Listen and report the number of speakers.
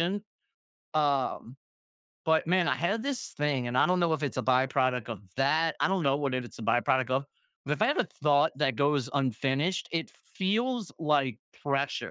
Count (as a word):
one